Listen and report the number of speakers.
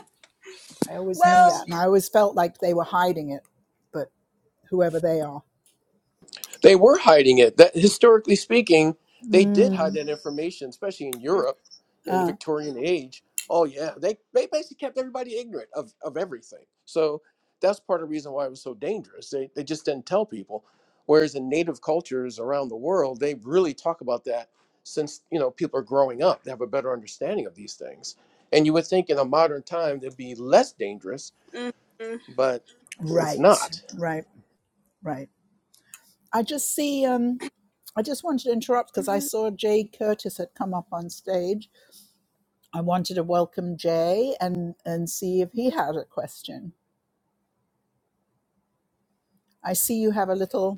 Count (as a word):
three